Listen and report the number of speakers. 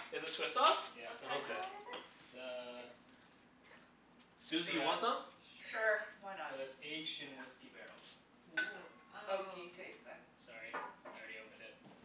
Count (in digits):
4